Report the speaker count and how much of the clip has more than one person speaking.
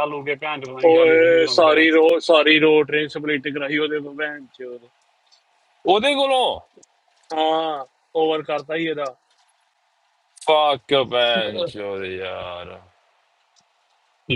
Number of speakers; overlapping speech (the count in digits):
3, about 7%